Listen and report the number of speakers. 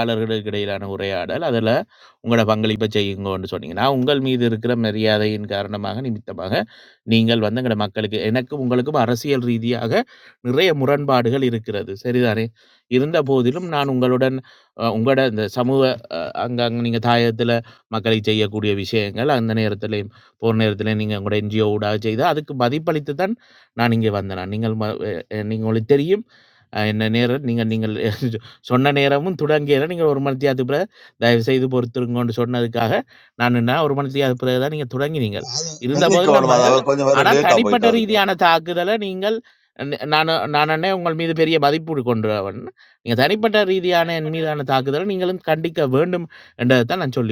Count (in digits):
2